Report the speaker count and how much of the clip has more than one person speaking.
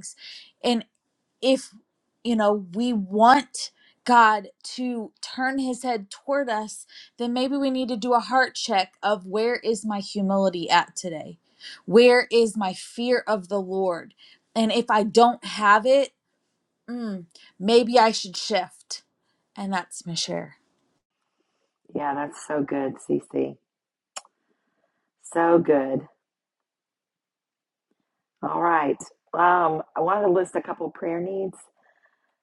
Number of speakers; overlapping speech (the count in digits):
2, no overlap